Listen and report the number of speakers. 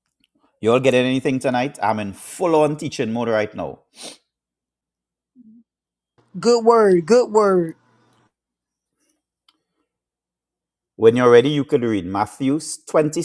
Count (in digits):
2